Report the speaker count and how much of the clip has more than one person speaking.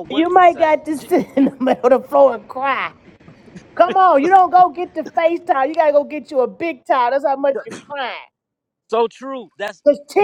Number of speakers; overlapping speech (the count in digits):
2, about 10%